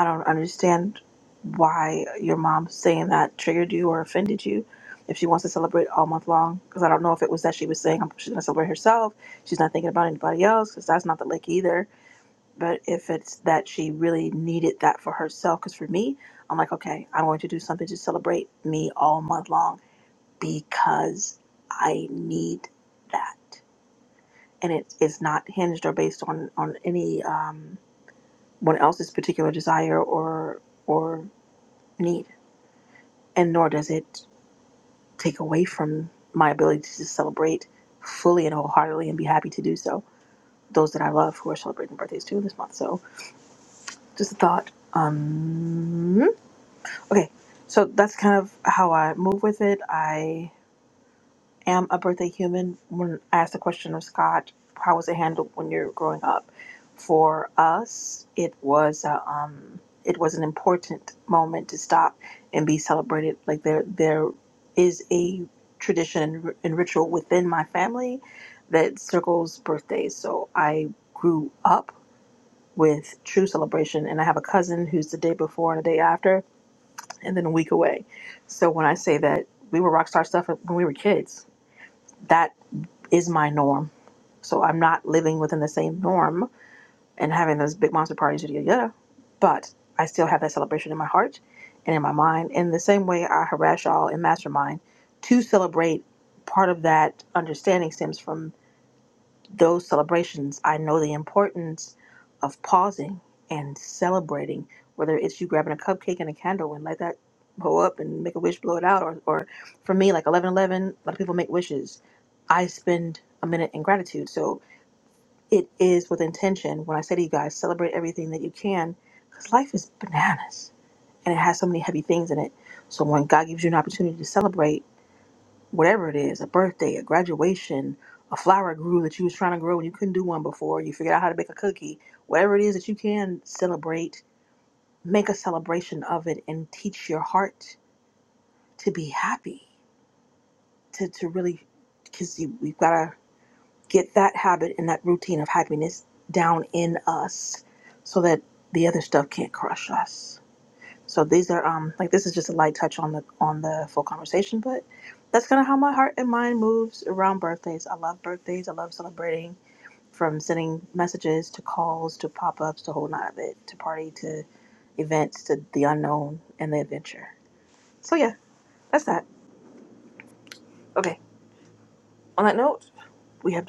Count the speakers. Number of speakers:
1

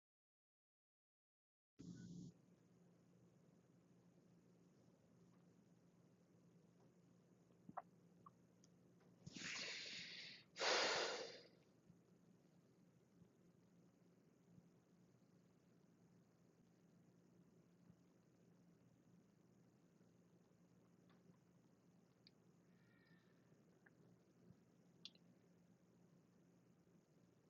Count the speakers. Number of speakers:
0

